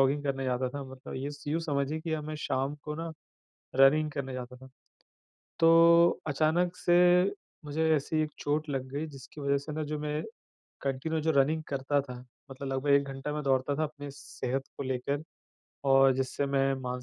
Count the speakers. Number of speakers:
one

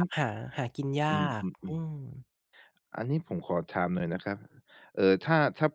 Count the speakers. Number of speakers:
two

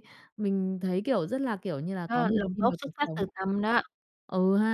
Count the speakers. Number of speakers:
two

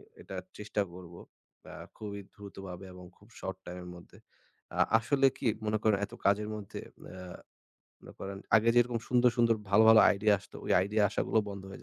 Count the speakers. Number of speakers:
one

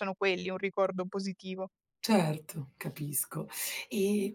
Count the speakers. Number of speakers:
two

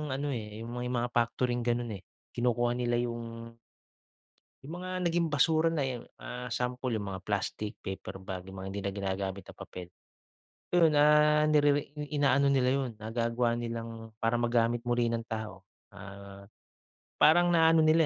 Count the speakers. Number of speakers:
one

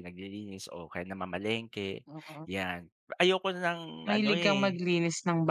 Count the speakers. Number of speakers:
two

